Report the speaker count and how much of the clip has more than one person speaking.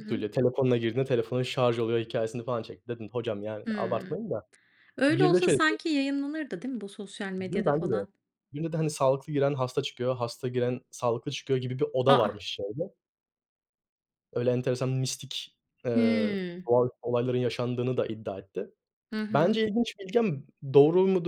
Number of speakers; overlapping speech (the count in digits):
2, about 15%